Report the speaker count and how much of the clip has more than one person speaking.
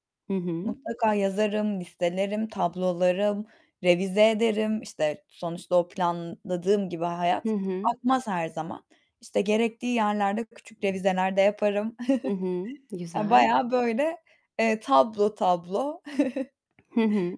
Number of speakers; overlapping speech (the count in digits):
2, about 4%